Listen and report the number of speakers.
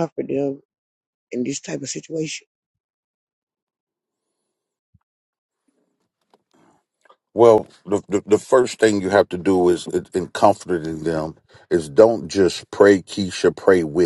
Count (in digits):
2